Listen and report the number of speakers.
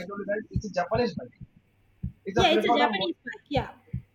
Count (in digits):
2